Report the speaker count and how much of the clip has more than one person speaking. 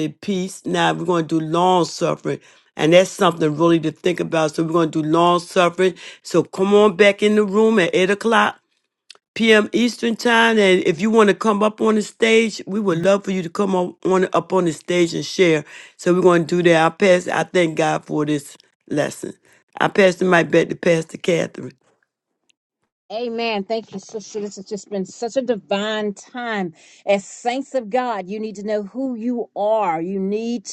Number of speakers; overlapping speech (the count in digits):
2, no overlap